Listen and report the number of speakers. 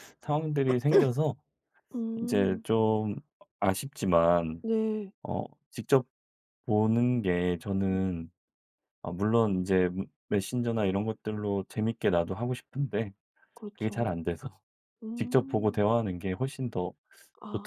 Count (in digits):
2